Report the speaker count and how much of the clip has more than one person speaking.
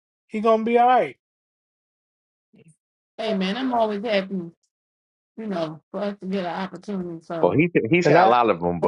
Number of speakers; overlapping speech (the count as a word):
three, about 6%